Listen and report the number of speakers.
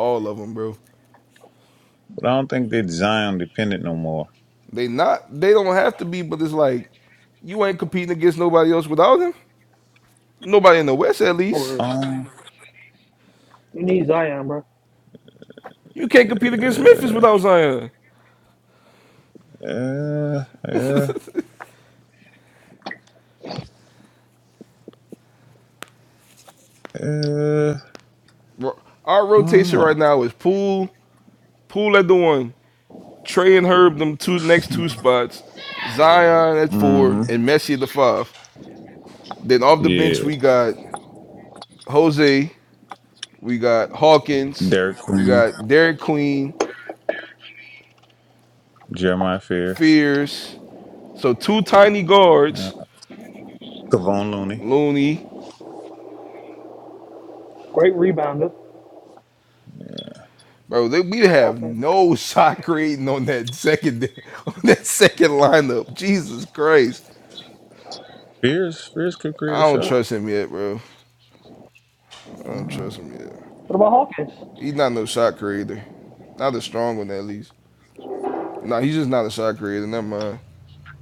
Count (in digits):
3